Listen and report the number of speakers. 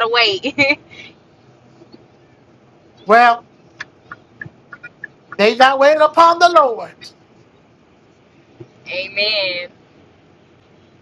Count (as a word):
two